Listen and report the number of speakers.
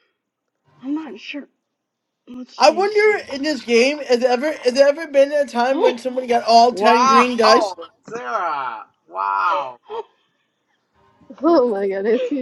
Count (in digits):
4